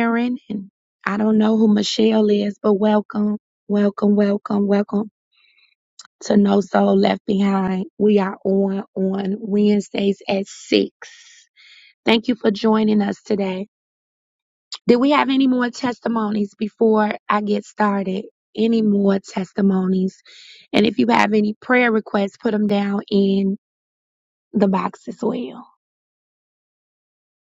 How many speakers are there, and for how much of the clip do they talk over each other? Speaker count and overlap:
one, no overlap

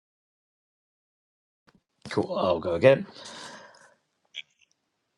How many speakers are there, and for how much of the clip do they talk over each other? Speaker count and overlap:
one, no overlap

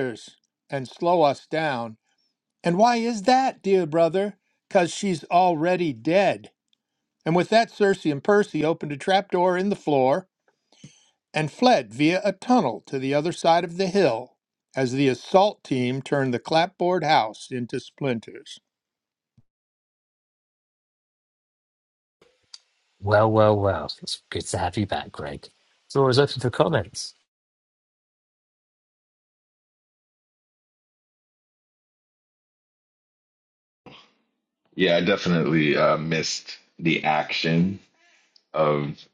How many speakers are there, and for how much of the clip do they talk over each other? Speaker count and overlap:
three, no overlap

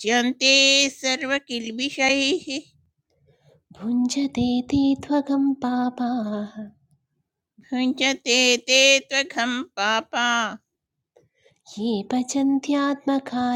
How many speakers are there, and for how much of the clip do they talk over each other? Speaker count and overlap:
two, no overlap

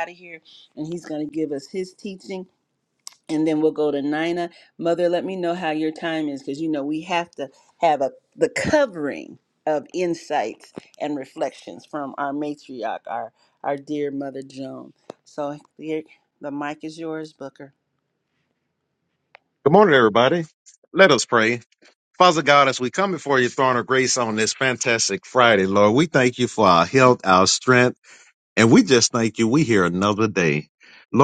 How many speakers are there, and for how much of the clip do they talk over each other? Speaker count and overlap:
two, no overlap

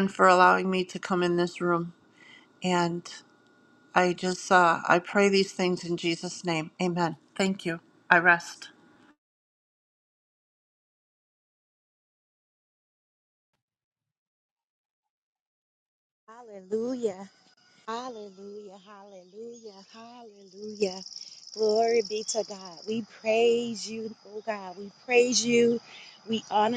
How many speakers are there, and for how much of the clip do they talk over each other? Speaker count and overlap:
two, no overlap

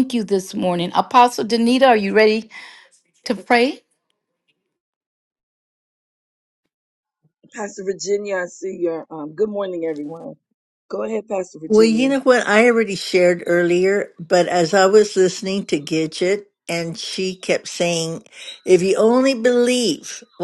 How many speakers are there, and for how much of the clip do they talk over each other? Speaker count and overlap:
three, about 2%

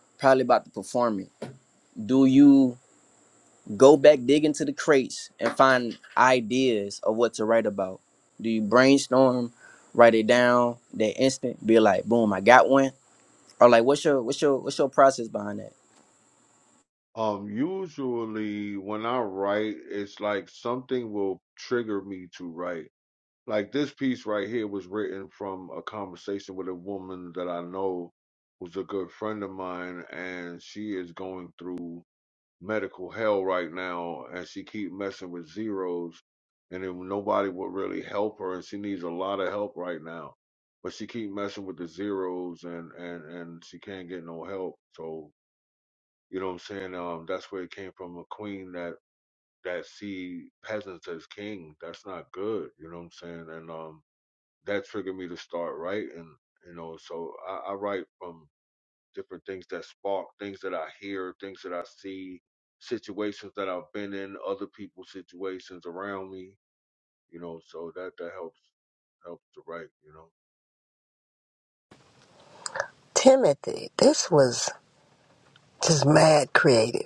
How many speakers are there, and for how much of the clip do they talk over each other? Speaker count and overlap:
three, no overlap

